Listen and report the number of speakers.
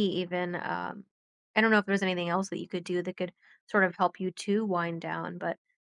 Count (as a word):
one